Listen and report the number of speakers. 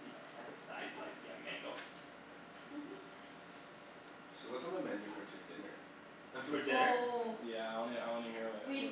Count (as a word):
four